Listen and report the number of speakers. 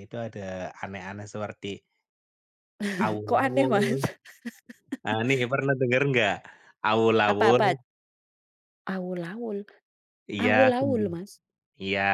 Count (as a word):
two